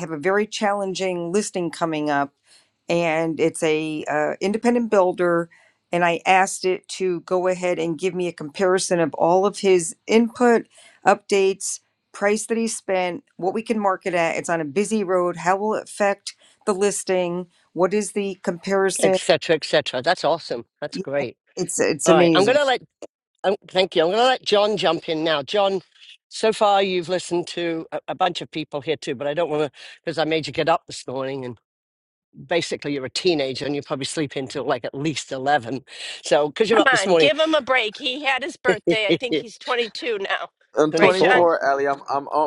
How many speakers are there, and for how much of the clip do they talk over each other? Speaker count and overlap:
4, about 5%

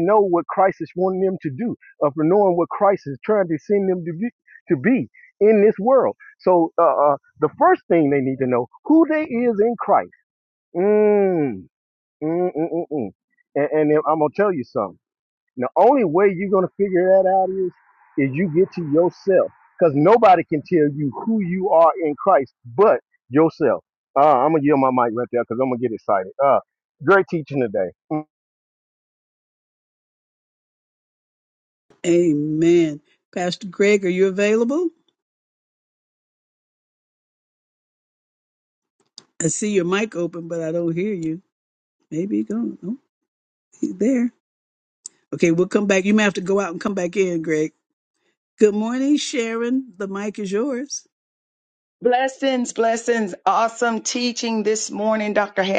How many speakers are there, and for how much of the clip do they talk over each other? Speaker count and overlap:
3, no overlap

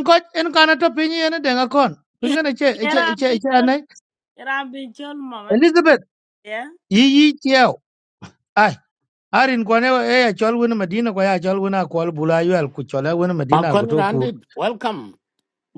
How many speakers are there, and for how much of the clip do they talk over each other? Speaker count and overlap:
3, about 12%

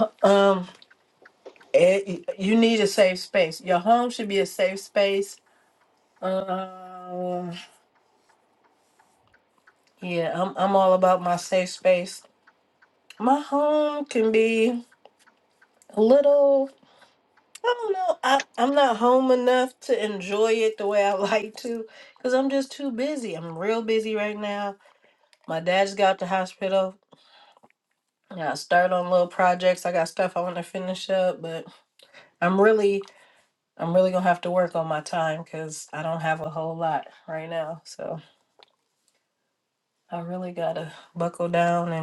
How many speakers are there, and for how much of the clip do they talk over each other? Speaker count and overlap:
1, no overlap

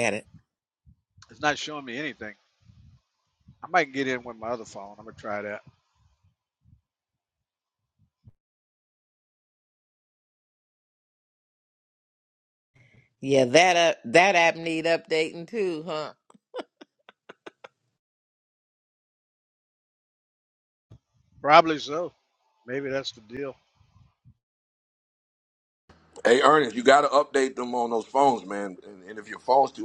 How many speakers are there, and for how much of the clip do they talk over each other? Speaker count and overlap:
3, no overlap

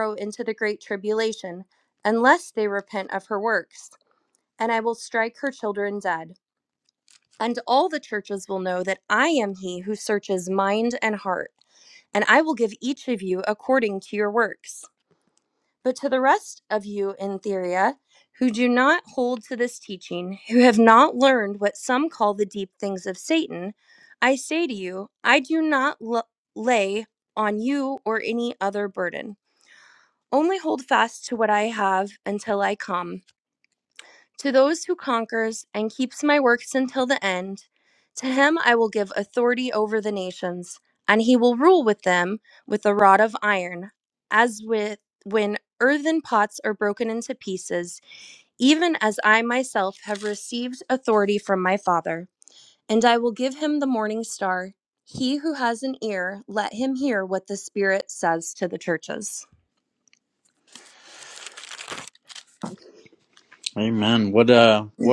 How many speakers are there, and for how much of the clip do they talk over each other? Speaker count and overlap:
2, no overlap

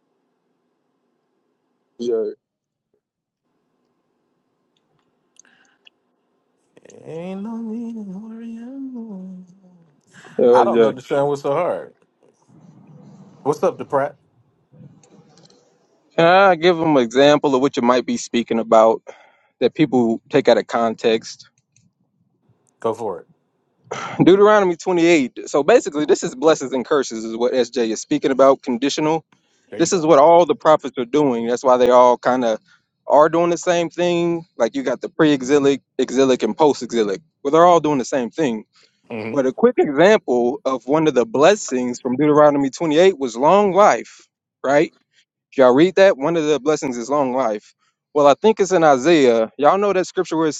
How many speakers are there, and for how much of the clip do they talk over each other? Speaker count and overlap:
2, about 2%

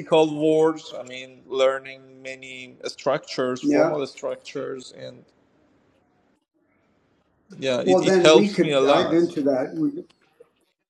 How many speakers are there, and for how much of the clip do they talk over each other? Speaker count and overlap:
2, about 15%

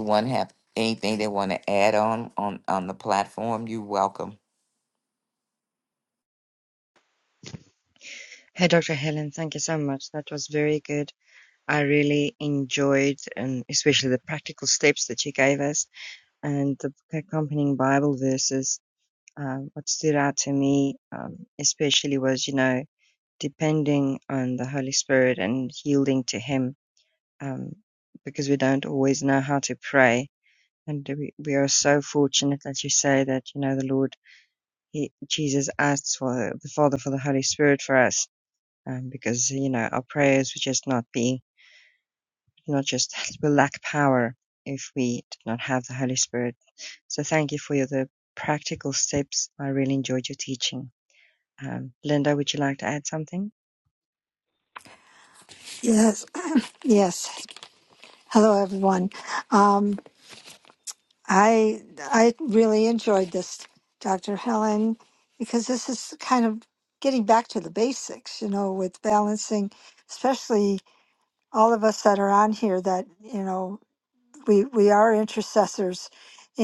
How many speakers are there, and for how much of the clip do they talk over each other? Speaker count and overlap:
3, no overlap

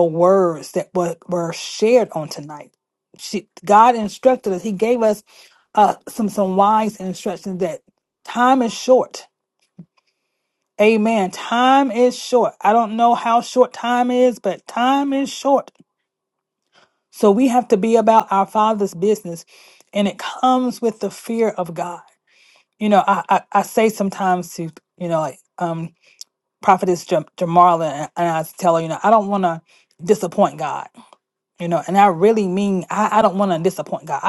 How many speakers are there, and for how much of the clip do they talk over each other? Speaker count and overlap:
1, no overlap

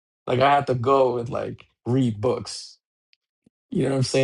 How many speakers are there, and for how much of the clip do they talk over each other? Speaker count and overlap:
1, no overlap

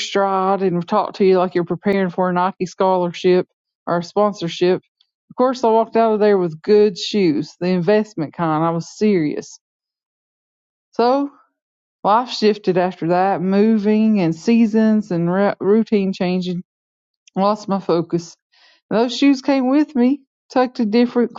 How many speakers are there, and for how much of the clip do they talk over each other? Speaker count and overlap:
1, no overlap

